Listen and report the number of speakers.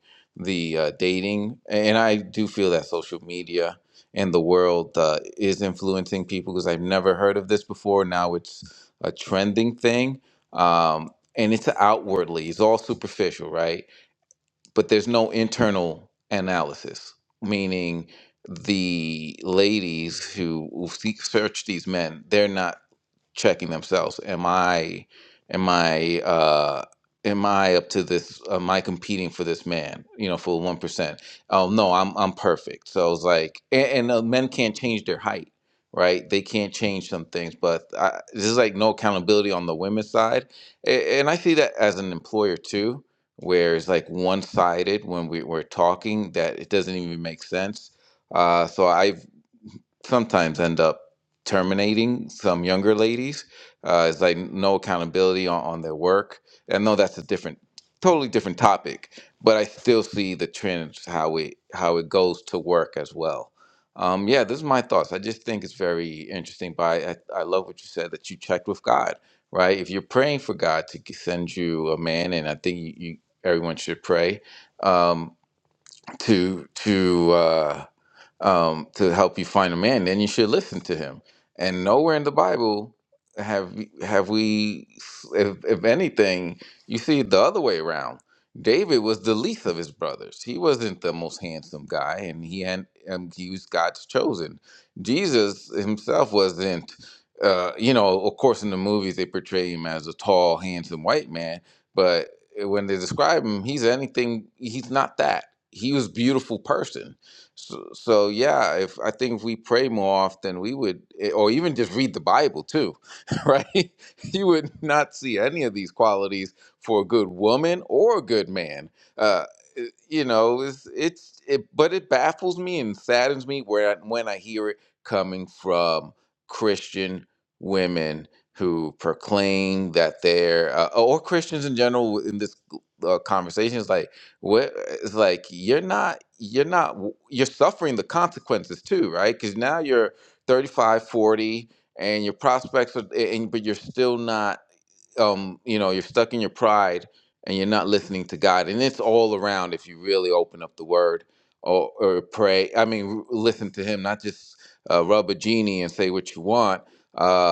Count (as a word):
one